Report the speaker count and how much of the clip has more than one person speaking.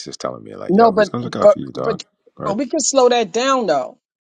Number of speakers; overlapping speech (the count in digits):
2, about 25%